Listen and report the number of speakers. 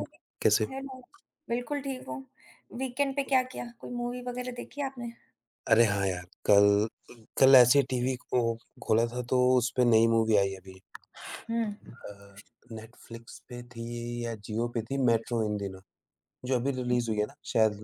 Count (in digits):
2